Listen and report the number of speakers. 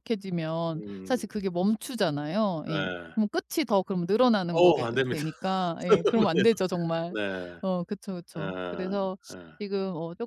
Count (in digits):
2